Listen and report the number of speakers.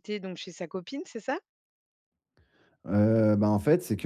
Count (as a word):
two